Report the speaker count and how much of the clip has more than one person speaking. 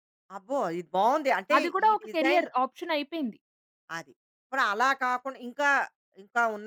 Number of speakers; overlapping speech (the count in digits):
2, about 14%